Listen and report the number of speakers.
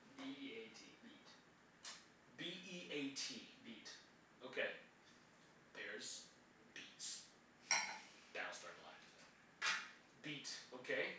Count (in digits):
2